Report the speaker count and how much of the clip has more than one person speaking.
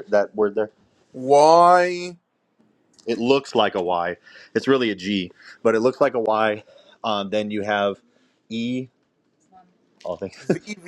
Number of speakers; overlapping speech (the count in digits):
2, no overlap